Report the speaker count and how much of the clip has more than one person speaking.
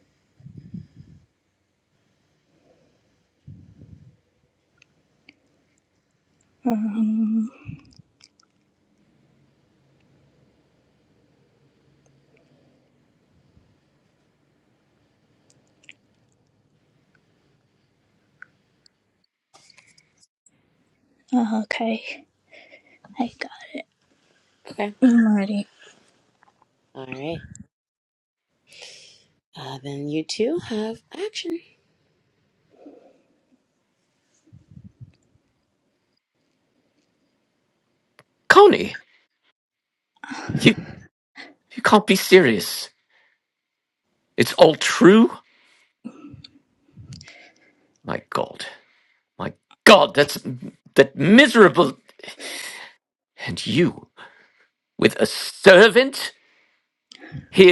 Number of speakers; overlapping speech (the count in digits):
3, no overlap